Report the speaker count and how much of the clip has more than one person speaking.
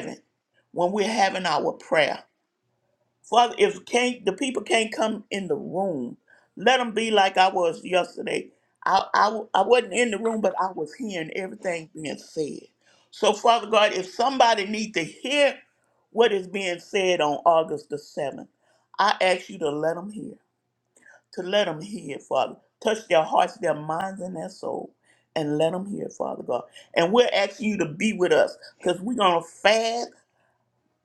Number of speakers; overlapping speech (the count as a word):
one, no overlap